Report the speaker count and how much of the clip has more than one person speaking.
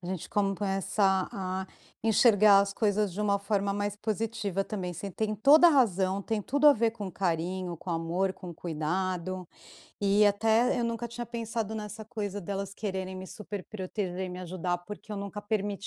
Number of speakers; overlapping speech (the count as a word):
one, no overlap